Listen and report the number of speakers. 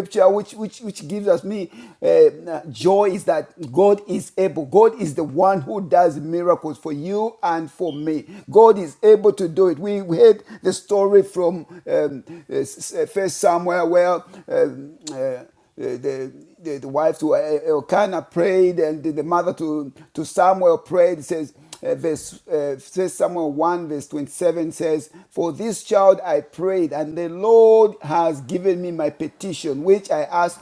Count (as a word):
one